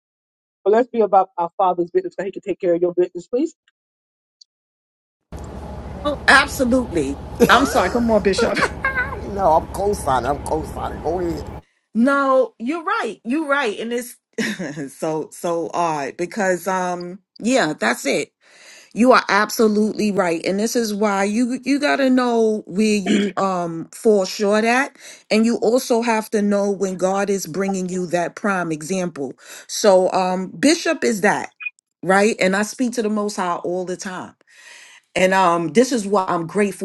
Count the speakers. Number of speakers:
3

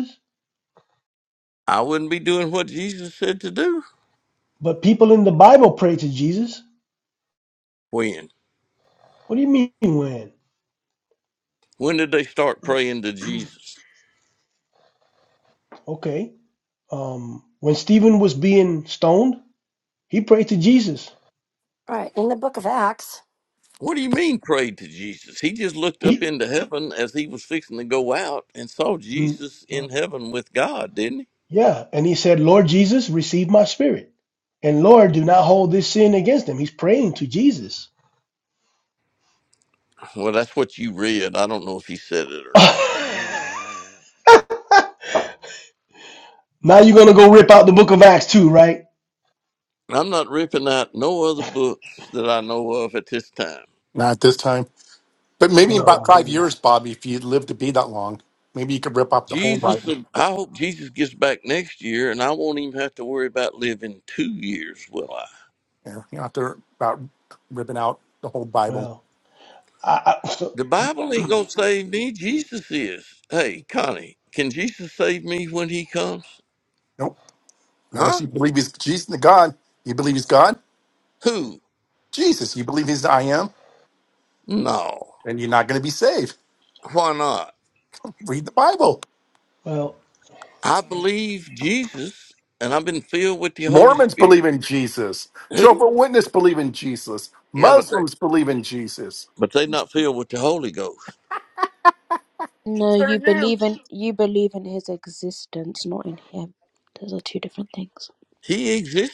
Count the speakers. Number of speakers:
5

